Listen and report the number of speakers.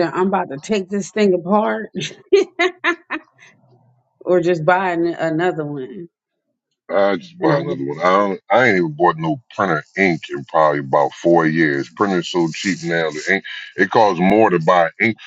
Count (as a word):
two